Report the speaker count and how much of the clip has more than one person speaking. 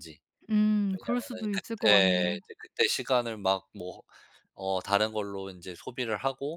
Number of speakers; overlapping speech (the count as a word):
two, about 22%